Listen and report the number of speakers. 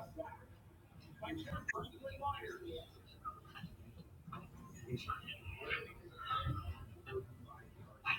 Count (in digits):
0